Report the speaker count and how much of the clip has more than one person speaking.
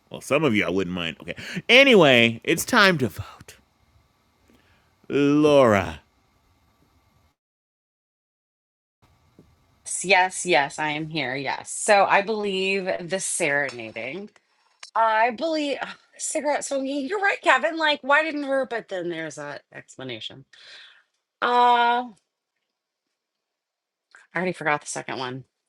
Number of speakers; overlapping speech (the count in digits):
2, no overlap